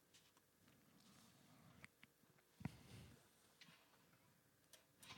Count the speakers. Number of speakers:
0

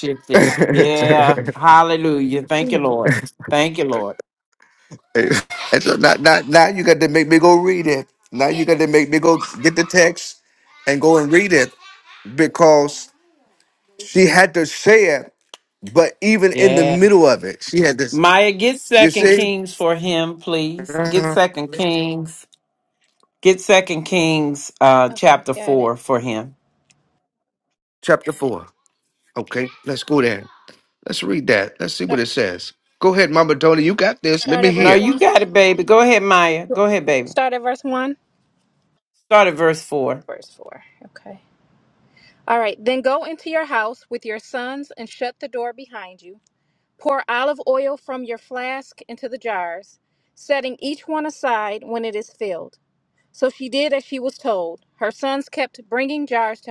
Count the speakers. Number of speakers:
3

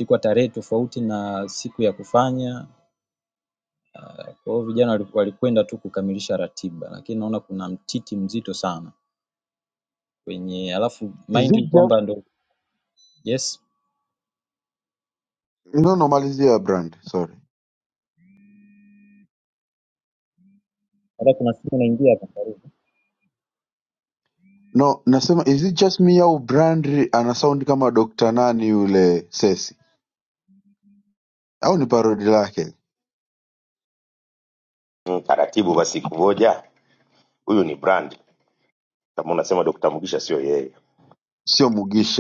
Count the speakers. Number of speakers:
3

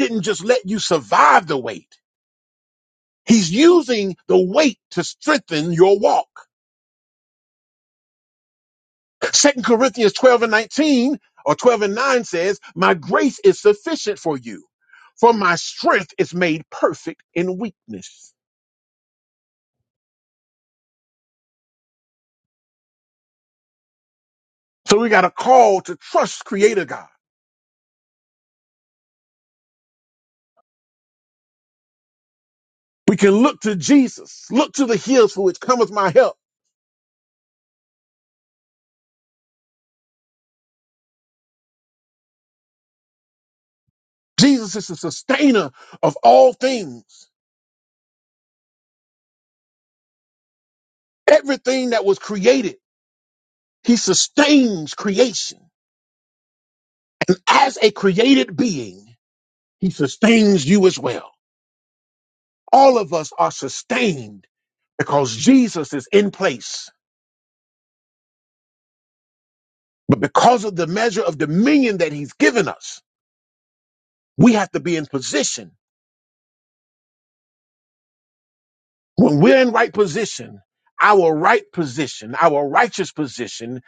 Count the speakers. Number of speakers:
1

